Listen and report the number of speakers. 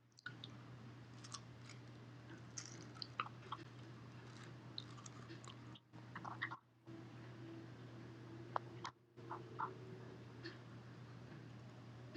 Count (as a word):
zero